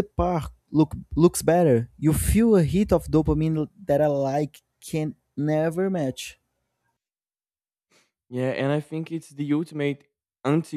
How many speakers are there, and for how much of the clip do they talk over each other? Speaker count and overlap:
2, no overlap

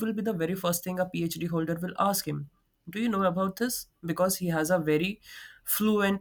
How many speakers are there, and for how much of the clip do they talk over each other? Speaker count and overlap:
1, no overlap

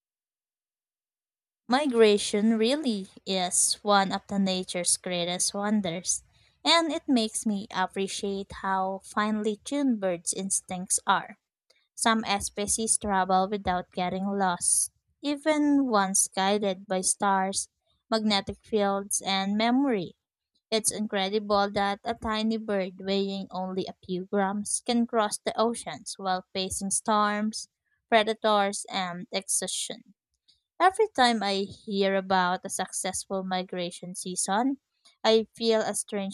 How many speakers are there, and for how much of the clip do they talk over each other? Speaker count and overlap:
1, no overlap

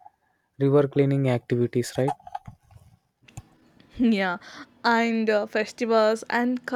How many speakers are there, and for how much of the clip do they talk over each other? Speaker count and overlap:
2, no overlap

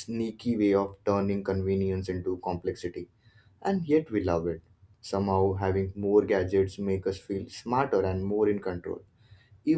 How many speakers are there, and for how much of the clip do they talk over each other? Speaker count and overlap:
1, no overlap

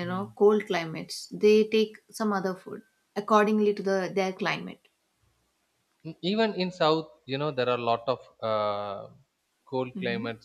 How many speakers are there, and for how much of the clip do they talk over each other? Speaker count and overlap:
2, about 5%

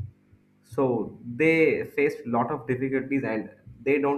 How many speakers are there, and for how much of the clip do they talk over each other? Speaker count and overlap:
1, no overlap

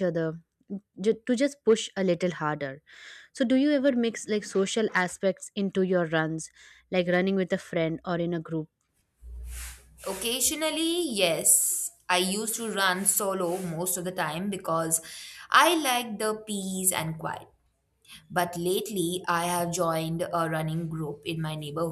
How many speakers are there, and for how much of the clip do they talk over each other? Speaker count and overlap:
2, no overlap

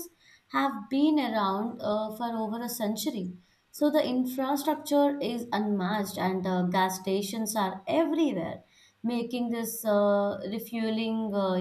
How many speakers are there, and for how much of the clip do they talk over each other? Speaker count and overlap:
1, no overlap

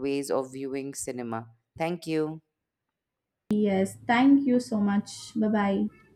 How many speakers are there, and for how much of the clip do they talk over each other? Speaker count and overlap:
2, no overlap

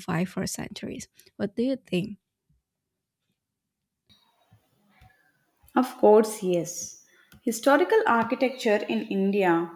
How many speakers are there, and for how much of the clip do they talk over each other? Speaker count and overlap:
2, no overlap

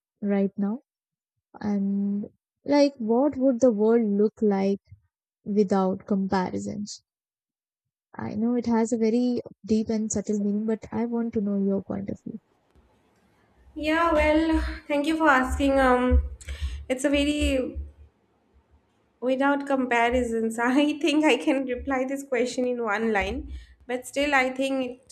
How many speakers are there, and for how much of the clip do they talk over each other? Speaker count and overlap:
2, no overlap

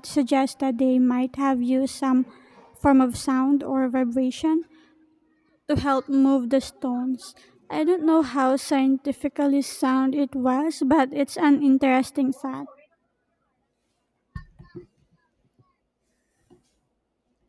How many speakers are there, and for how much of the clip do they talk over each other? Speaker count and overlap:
1, no overlap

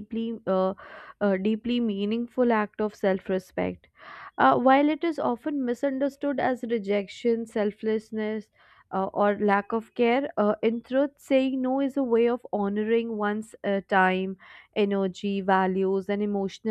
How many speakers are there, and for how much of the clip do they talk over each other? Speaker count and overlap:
1, no overlap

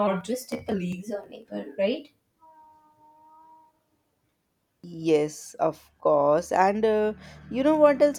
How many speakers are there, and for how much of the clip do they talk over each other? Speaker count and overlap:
2, no overlap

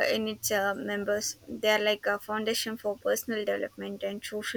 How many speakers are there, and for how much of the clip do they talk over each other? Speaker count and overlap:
1, no overlap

